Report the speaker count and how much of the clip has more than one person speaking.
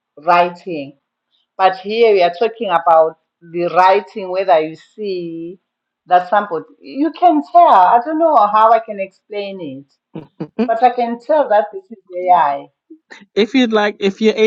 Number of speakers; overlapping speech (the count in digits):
2, no overlap